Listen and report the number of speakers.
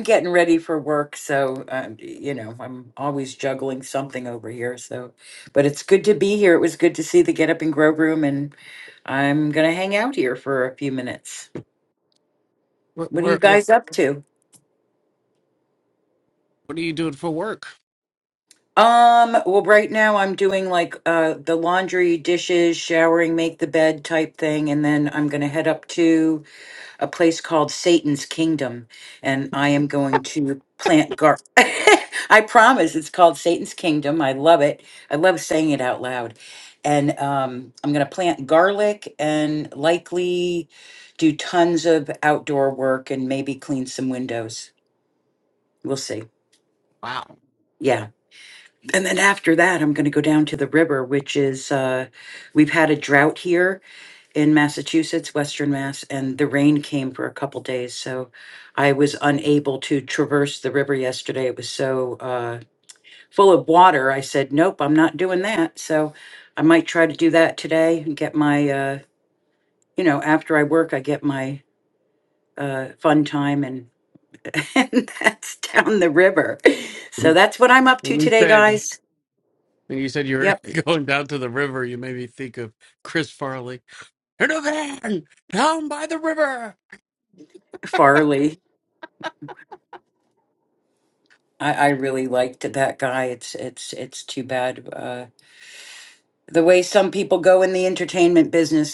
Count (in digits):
2